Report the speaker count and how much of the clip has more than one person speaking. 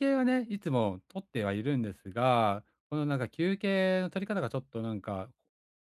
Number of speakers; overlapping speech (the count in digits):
1, no overlap